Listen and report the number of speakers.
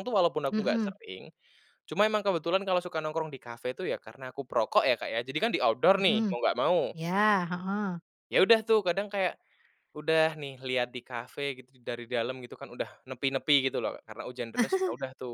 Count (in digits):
2